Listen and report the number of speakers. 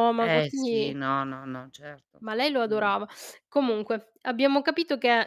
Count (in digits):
2